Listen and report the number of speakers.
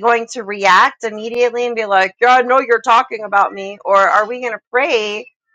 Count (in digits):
1